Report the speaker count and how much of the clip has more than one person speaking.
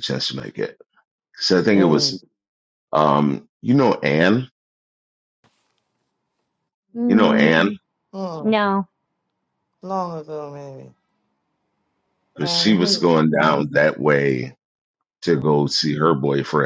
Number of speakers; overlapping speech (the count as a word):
three, about 12%